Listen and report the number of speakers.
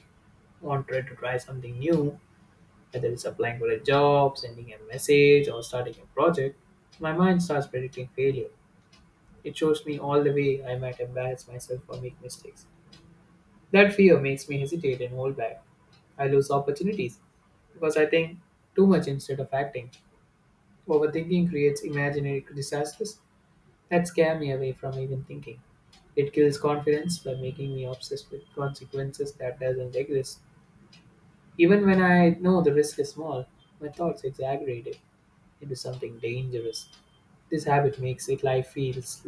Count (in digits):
1